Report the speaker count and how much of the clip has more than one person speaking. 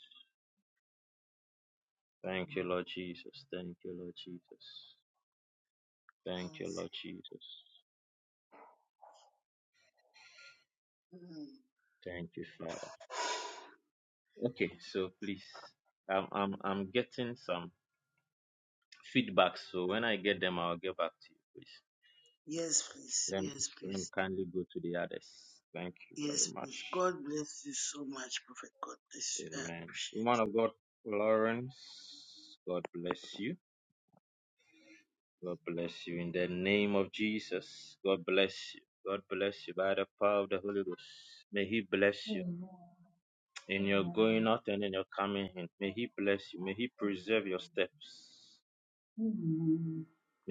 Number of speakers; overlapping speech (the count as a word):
three, about 2%